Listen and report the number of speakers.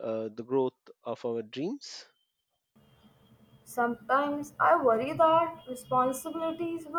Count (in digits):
2